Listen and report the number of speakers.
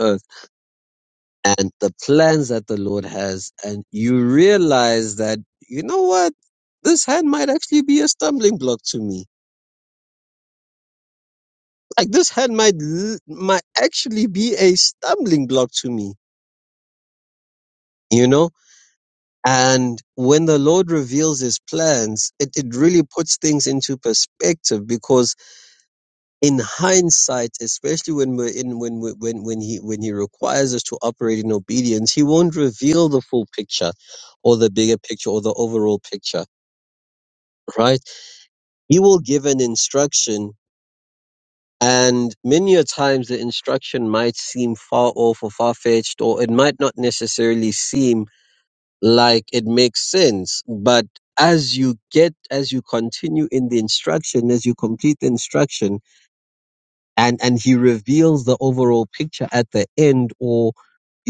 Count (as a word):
one